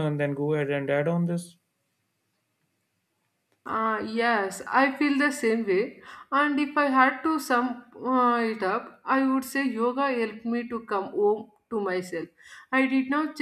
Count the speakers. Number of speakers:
two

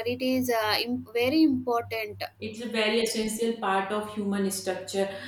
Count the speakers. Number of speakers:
two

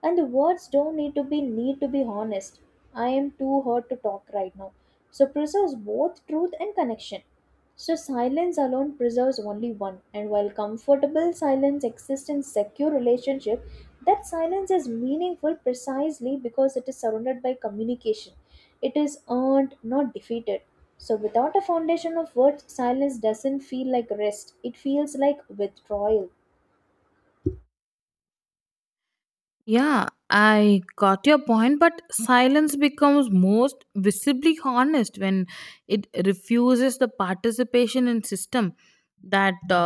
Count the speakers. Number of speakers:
two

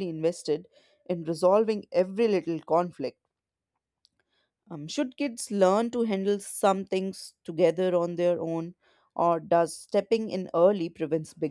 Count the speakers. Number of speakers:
one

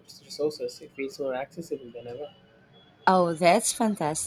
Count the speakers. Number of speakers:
two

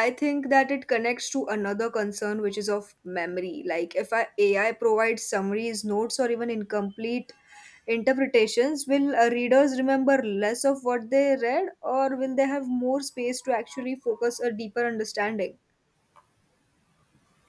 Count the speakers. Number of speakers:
one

